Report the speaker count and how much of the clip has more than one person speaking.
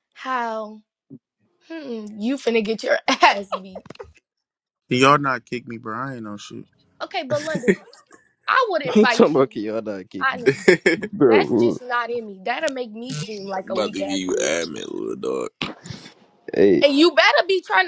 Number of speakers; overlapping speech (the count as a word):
four, about 11%